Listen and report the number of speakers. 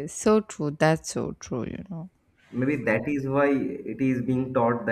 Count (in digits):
2